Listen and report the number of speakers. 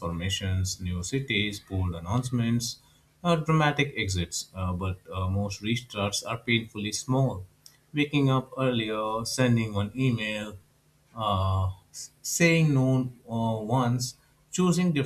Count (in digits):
1